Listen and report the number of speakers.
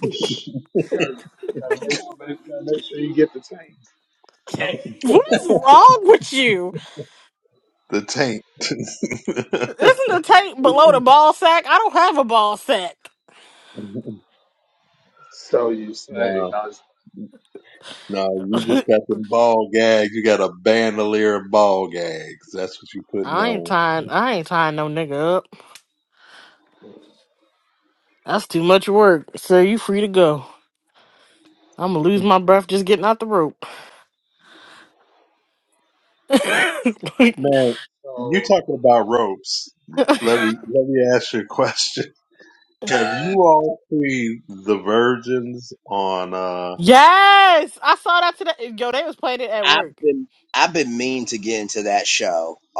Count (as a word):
four